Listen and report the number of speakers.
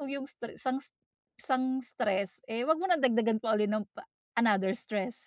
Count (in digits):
1